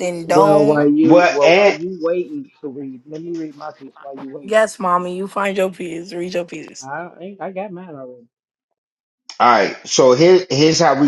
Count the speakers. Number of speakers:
3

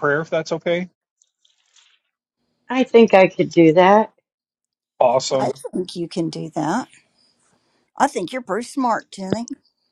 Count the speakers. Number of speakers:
3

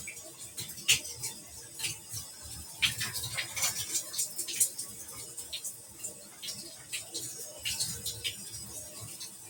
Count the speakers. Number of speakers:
0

